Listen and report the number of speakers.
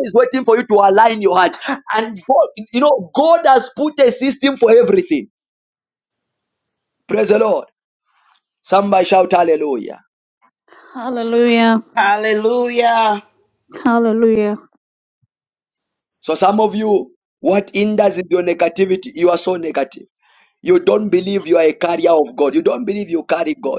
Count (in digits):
3